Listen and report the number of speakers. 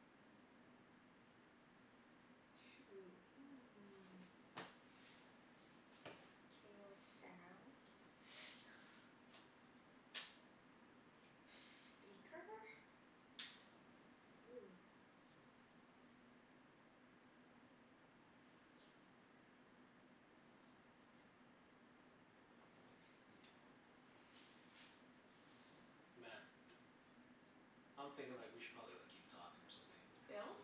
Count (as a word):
two